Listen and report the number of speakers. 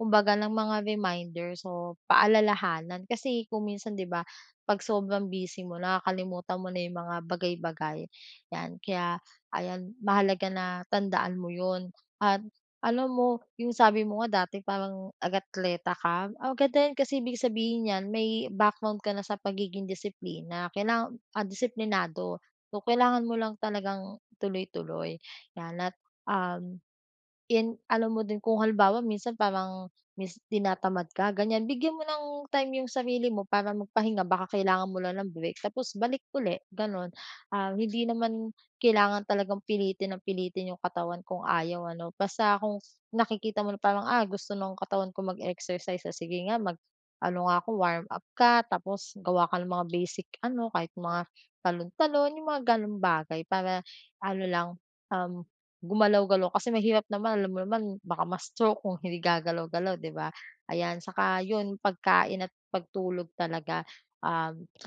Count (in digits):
1